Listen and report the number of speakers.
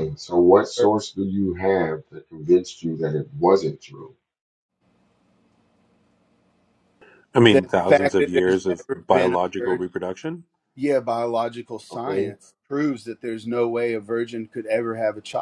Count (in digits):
3